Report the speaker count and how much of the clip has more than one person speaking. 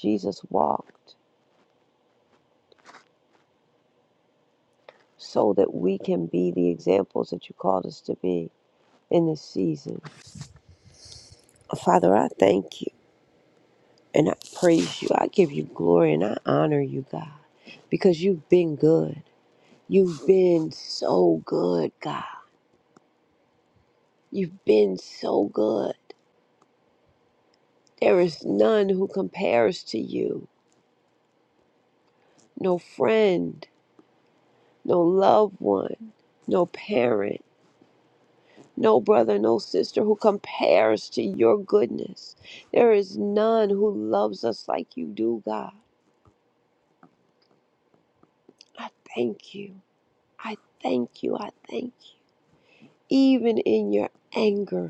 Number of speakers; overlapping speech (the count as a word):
one, no overlap